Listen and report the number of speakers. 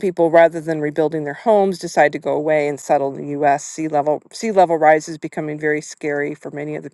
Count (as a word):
one